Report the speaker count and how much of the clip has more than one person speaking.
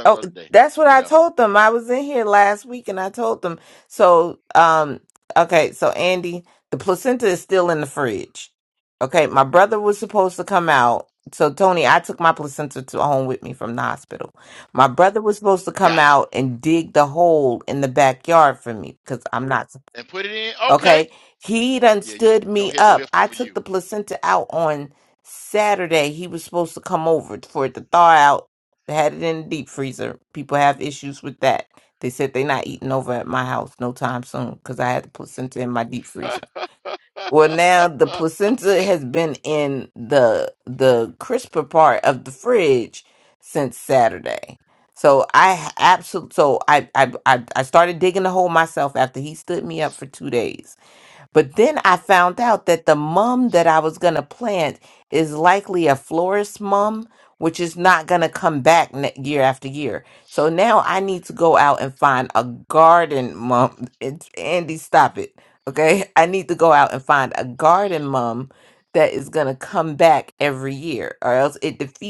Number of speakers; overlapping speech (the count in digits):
2, about 4%